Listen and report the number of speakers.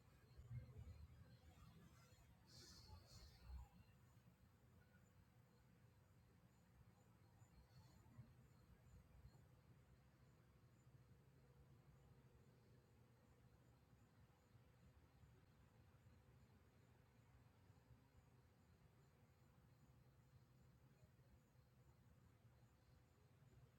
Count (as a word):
zero